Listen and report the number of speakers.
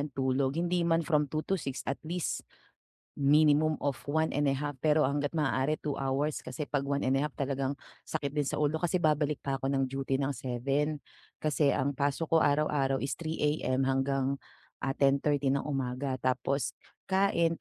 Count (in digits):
1